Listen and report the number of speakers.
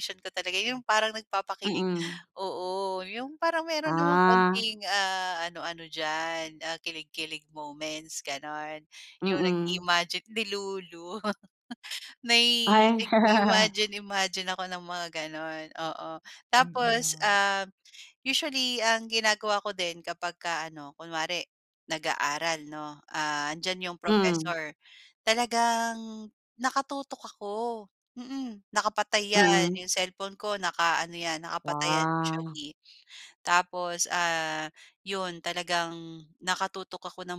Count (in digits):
2